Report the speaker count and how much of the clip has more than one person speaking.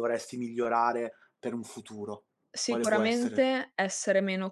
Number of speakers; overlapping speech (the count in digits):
2, about 15%